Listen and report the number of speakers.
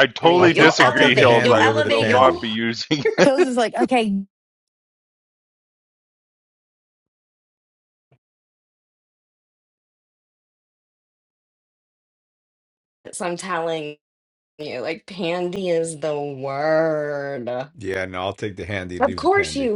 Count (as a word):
four